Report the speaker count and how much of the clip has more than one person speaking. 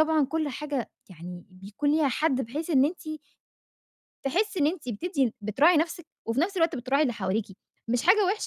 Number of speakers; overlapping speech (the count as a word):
one, no overlap